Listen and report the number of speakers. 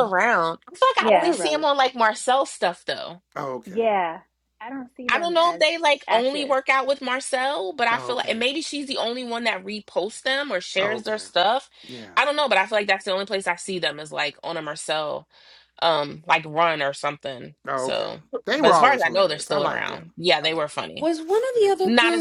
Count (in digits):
4